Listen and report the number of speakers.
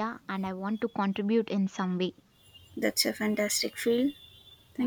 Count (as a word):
two